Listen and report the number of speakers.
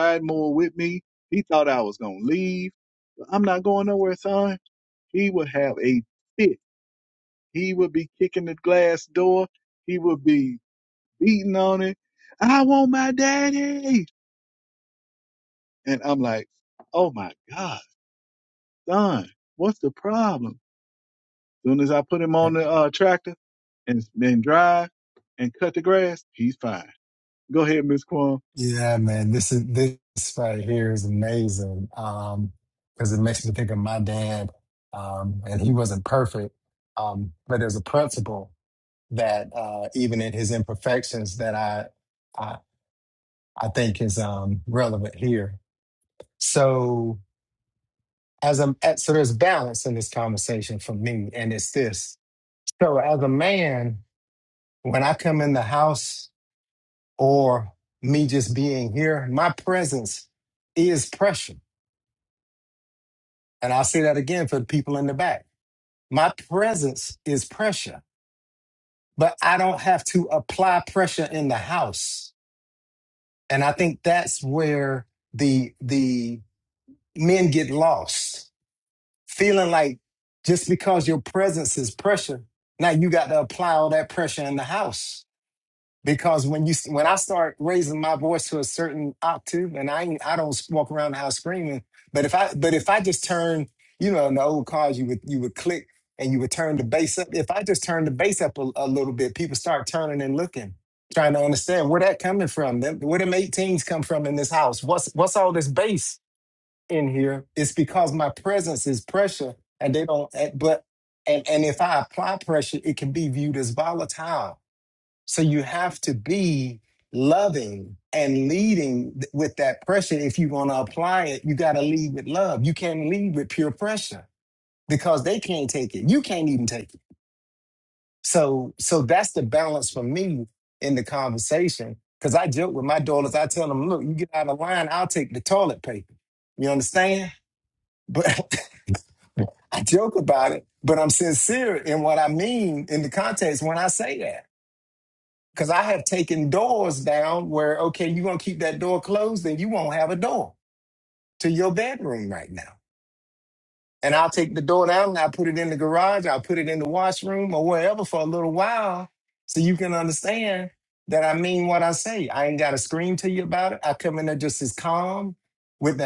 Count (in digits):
2